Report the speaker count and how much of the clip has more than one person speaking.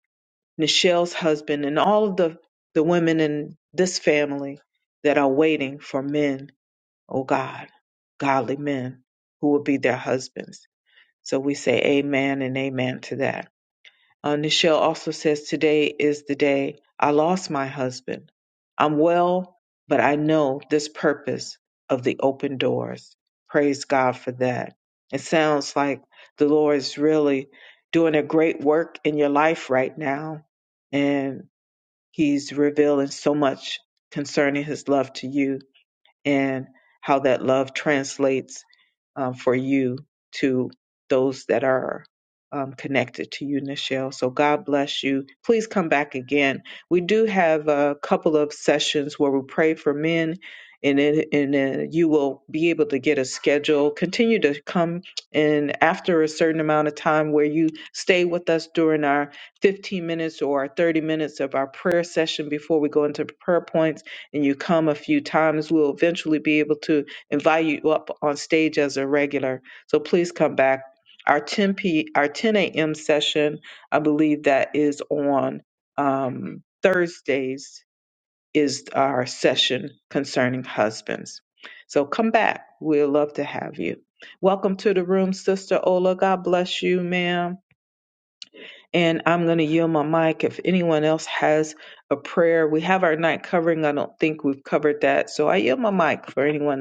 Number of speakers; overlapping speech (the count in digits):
1, no overlap